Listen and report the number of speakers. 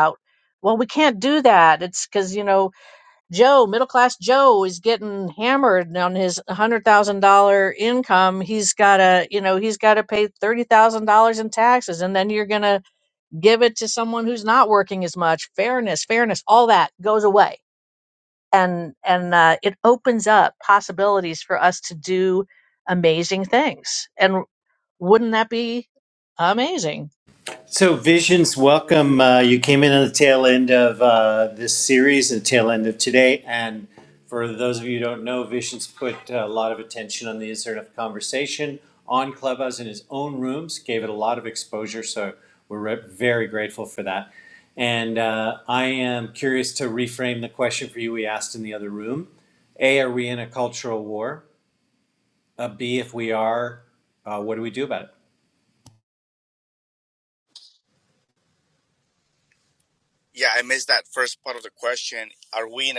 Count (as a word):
three